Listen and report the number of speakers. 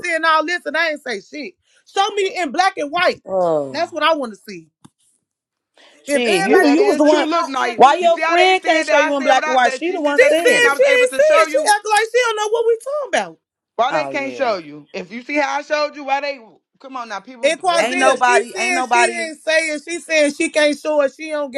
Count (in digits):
3